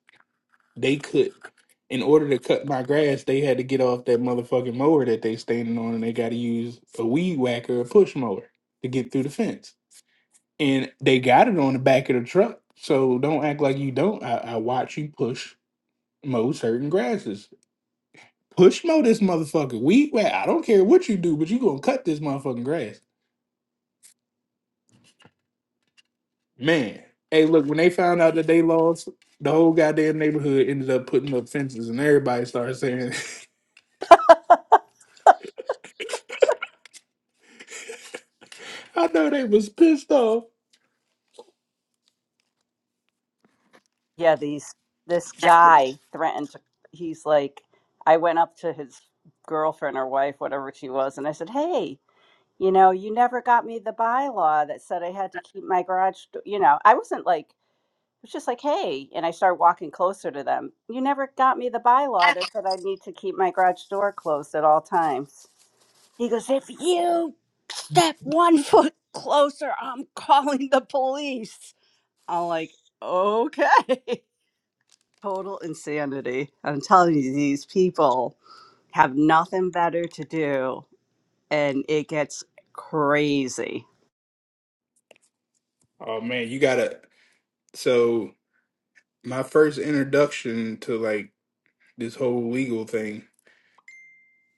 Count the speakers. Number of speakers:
two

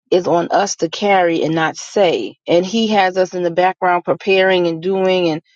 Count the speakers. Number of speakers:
one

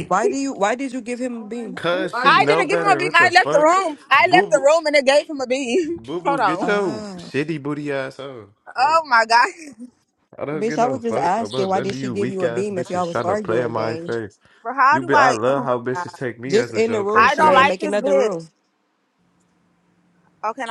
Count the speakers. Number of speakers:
three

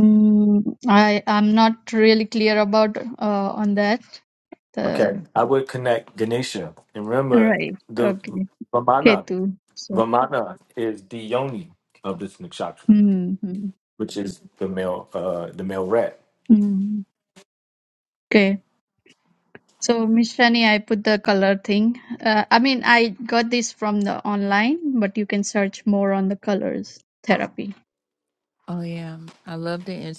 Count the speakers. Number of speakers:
three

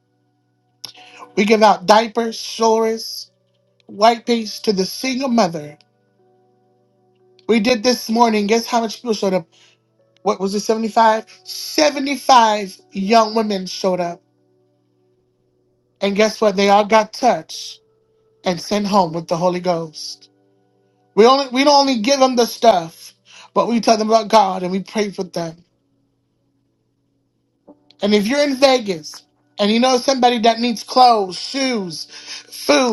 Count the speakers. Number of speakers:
one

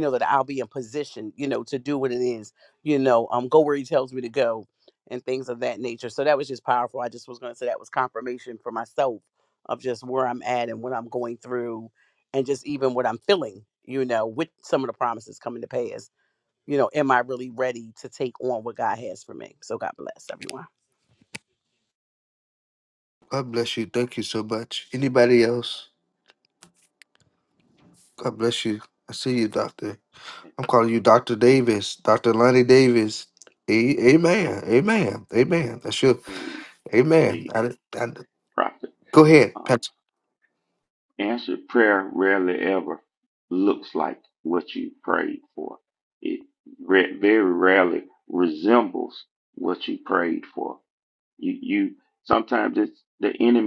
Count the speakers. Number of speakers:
three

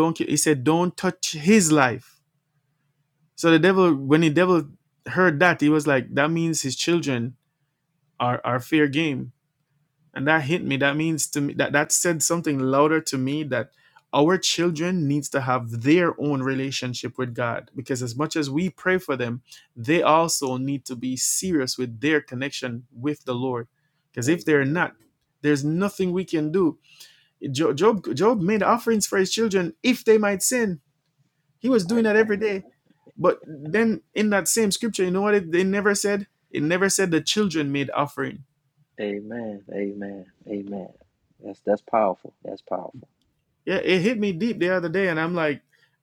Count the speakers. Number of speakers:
two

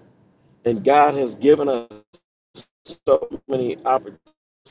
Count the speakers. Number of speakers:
one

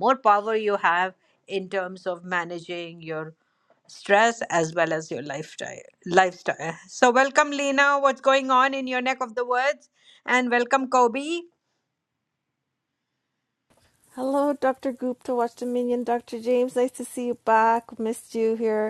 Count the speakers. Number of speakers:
two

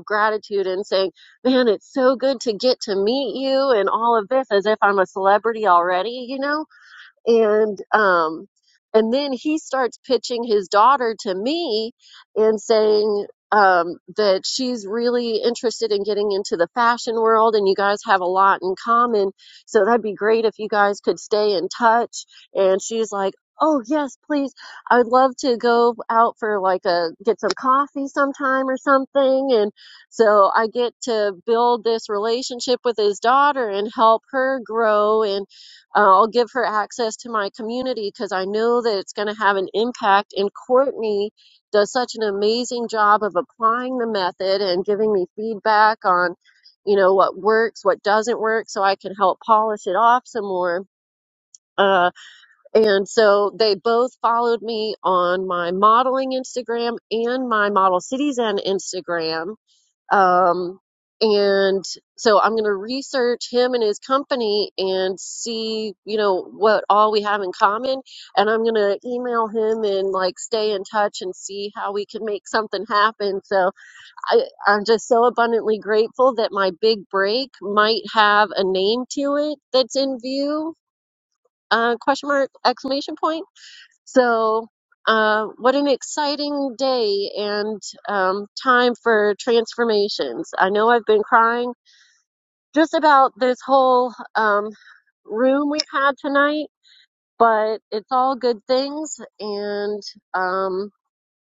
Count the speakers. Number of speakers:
one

